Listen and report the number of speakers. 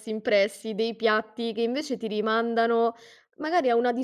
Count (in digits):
1